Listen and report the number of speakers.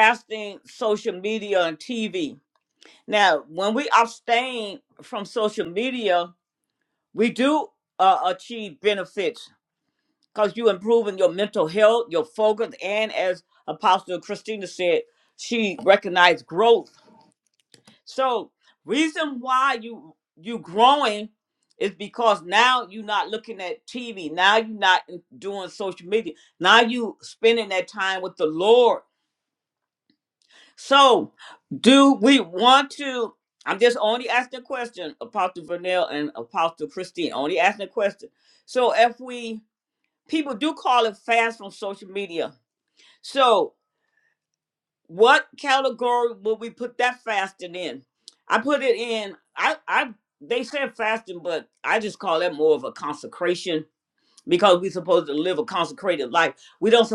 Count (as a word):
one